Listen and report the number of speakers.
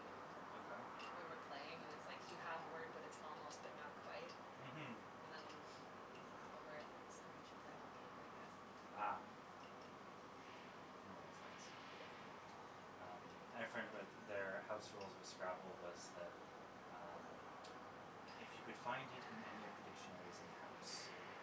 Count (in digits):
2